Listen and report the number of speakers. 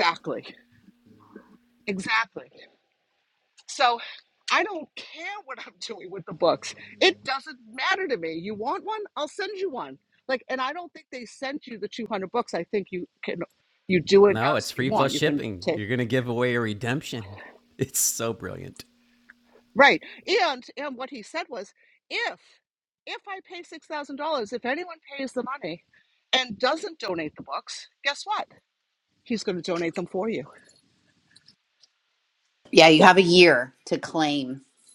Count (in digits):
3